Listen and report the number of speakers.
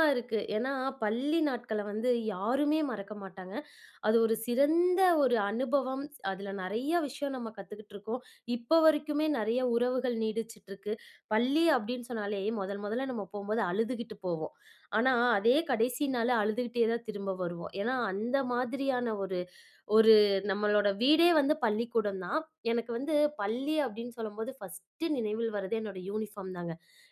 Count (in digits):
1